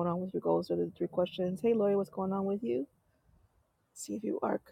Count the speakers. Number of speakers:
1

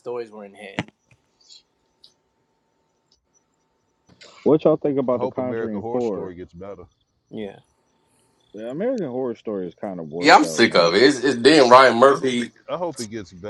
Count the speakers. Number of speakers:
4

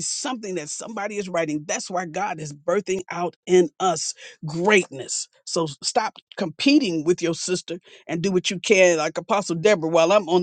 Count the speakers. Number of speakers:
1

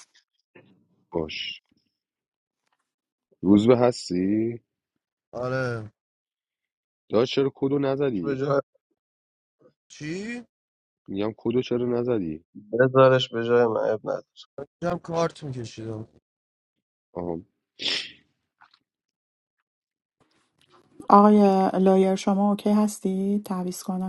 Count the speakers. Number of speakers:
4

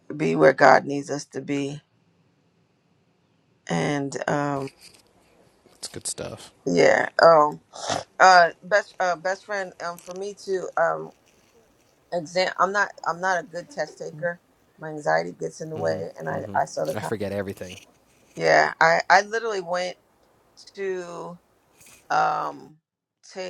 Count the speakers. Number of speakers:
2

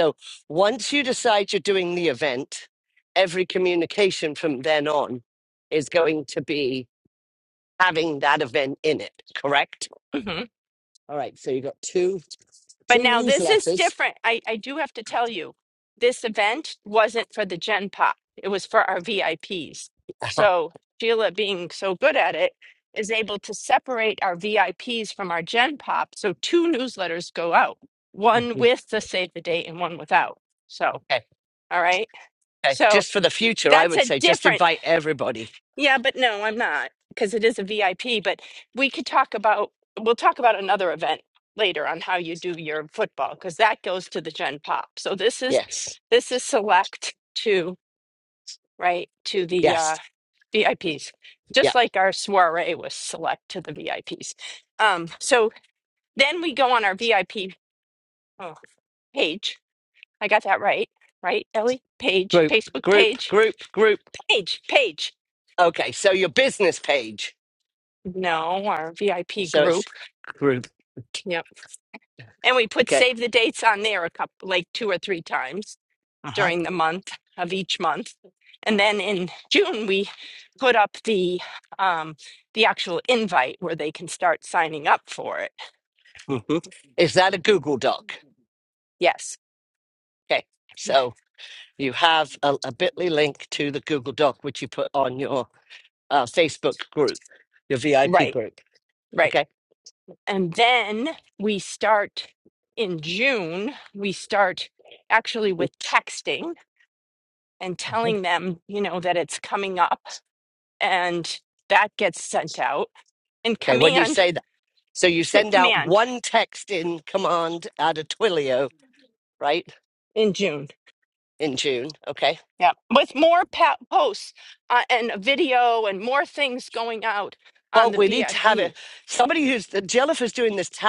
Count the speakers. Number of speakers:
2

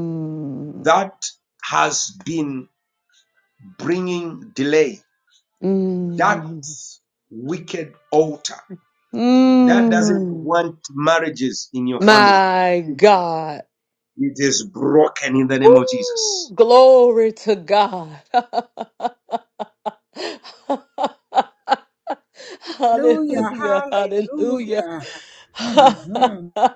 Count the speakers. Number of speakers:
3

